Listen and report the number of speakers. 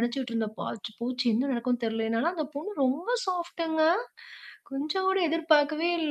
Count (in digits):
1